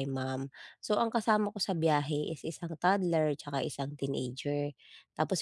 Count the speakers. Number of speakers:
1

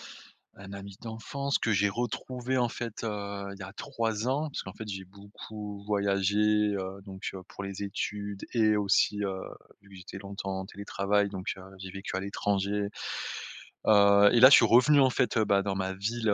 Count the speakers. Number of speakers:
1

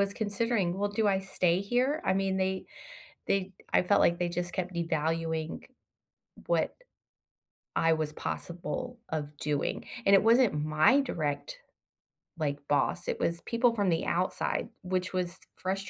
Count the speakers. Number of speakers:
1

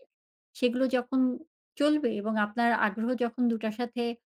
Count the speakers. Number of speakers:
1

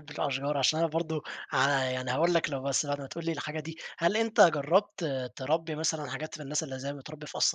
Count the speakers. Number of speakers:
1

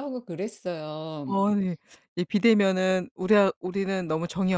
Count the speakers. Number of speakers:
2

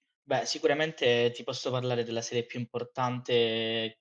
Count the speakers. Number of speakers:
1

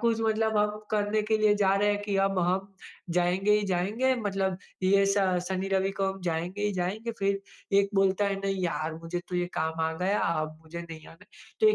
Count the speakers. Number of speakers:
1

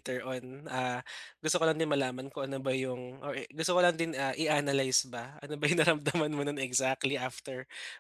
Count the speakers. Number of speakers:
1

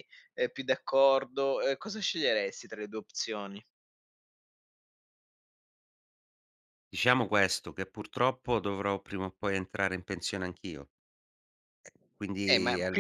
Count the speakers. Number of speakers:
2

